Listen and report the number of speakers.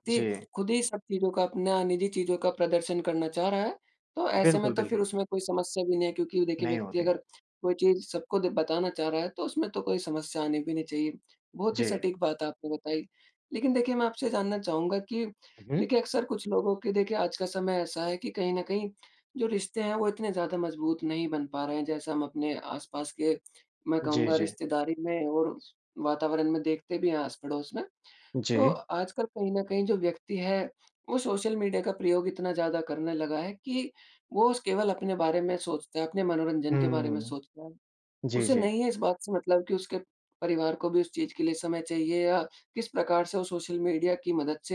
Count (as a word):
two